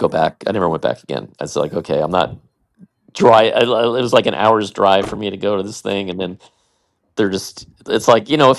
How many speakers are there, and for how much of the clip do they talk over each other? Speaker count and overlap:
1, no overlap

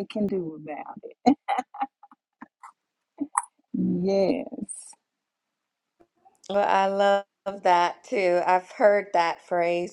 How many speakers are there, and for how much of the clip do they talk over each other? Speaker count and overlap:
2, no overlap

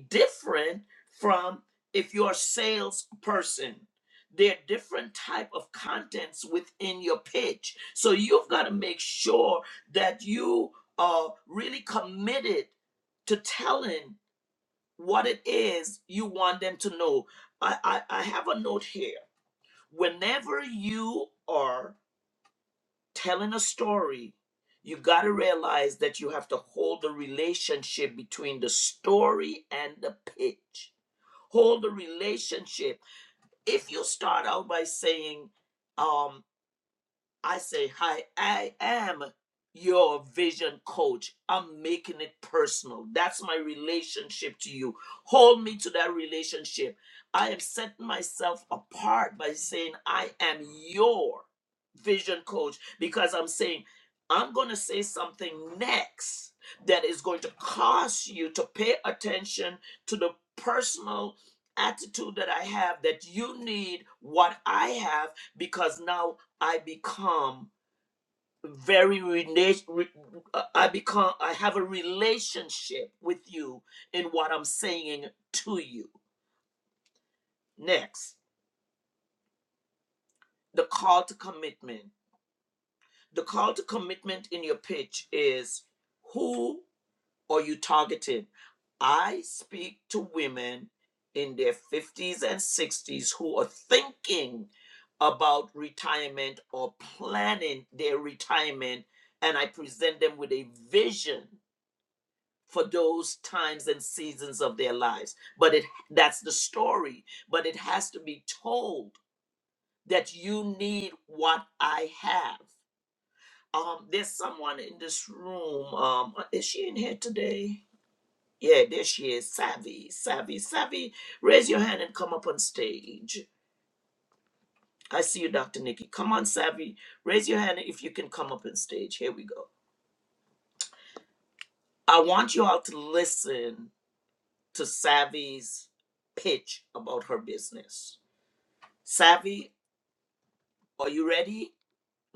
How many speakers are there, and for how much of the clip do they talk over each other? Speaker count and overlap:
1, no overlap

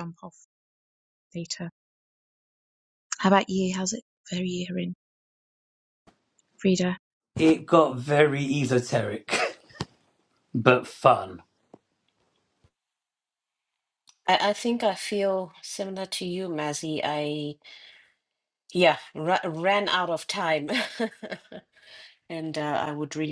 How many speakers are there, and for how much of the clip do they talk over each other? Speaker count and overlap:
3, no overlap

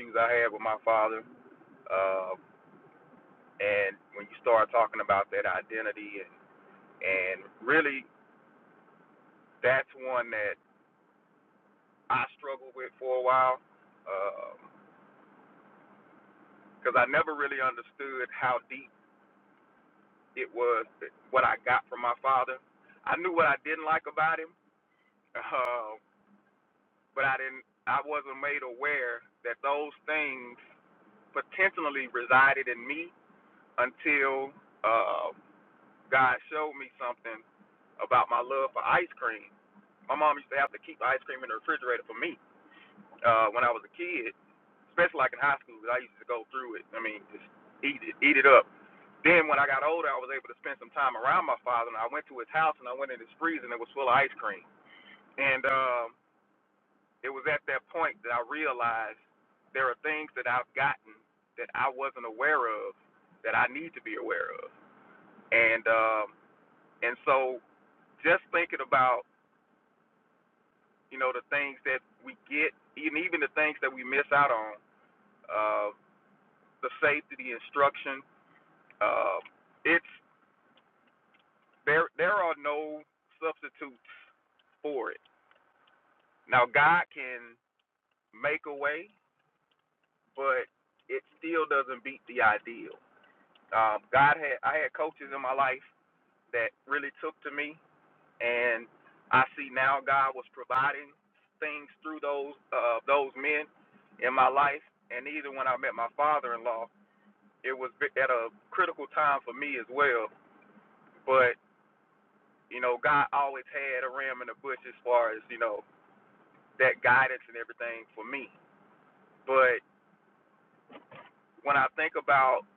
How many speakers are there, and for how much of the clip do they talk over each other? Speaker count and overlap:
1, no overlap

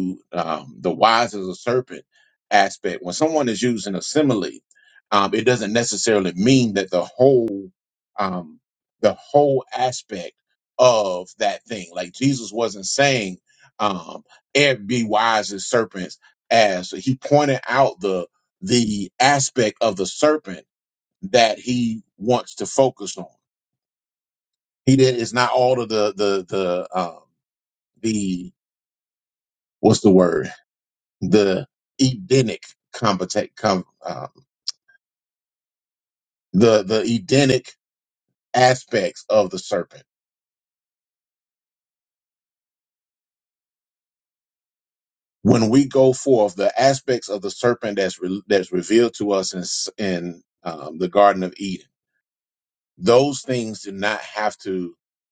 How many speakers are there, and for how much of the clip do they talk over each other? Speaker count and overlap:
1, no overlap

